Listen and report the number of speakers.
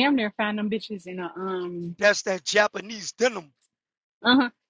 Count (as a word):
two